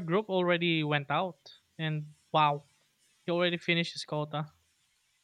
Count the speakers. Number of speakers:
1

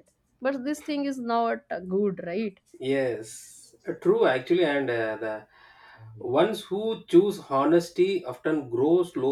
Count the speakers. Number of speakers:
2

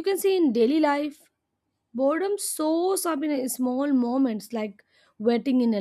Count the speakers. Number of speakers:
1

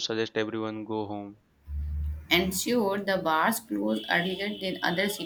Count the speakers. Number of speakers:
2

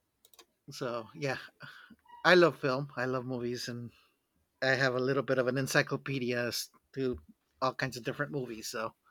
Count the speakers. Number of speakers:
1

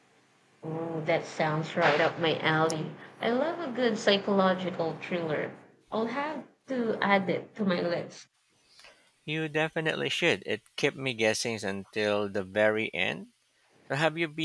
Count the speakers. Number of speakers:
2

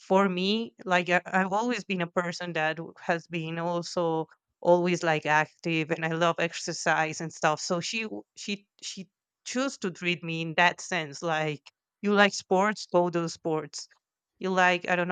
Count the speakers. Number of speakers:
1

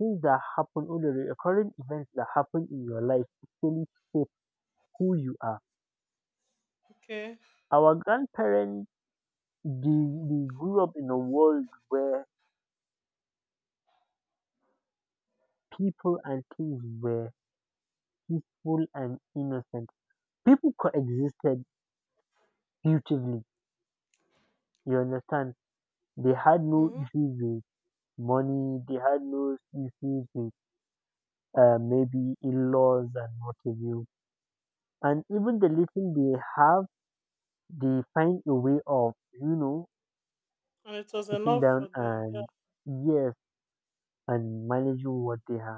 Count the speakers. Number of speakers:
2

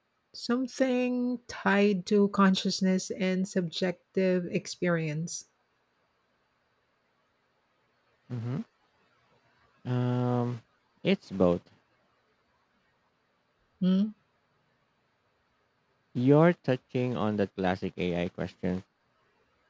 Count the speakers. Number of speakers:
2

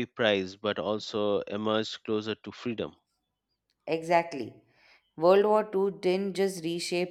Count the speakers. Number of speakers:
2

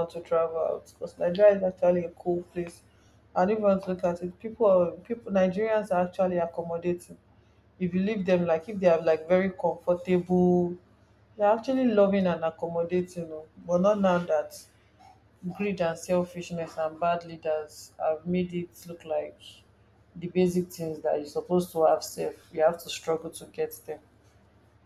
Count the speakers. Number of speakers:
1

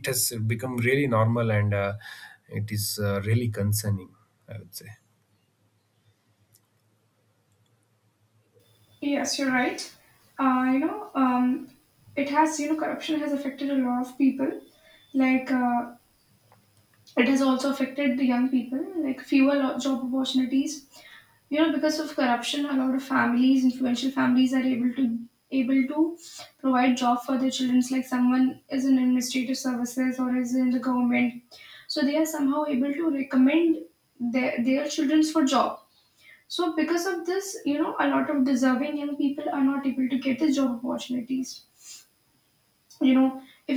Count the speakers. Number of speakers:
2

